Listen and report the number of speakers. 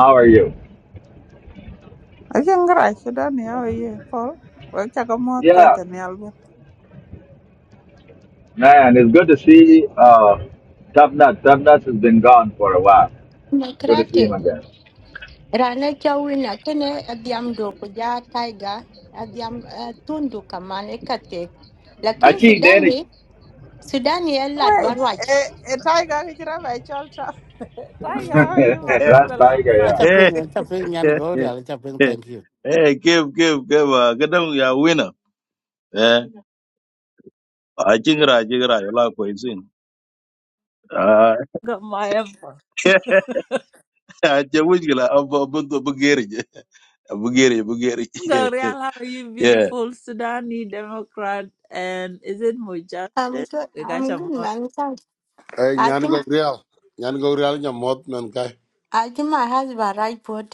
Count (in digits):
6